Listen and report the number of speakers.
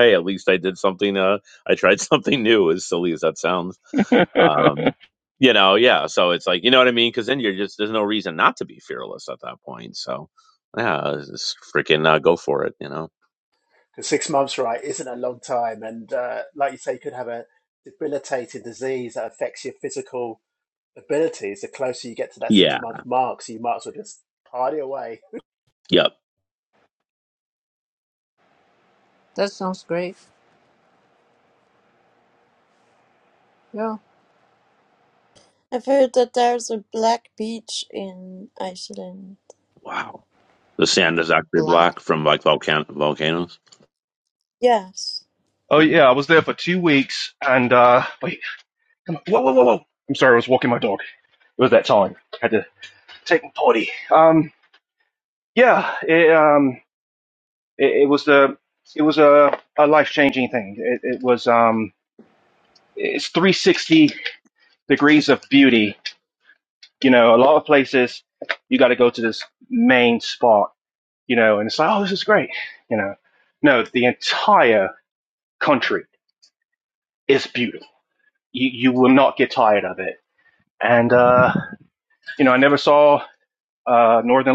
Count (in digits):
5